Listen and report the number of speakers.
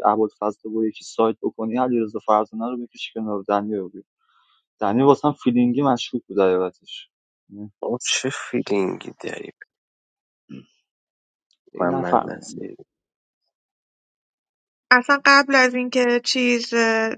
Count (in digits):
3